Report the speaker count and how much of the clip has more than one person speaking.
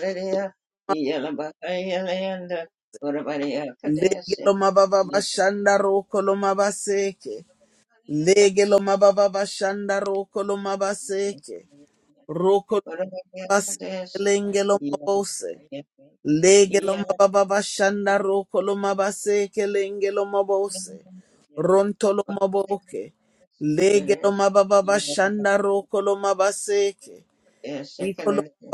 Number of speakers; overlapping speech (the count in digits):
2, about 11%